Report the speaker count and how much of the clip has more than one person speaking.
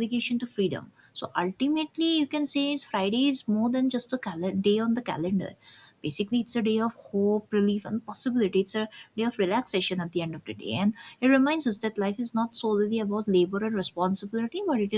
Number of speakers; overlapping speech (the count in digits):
1, no overlap